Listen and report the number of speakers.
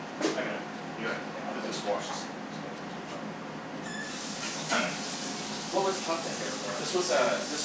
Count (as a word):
two